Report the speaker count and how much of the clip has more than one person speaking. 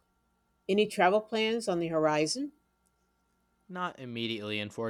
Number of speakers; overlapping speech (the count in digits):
2, no overlap